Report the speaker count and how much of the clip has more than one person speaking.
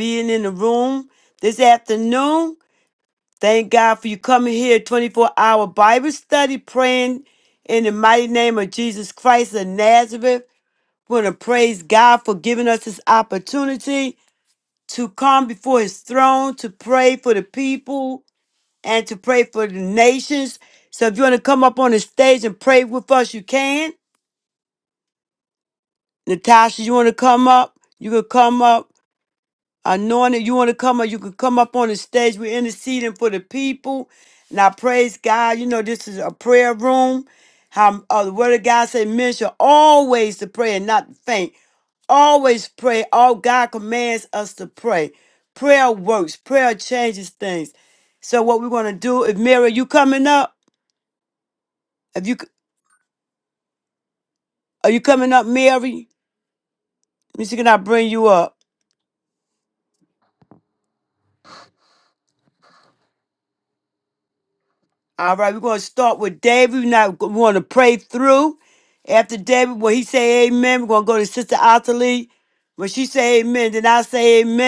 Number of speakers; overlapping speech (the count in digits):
1, no overlap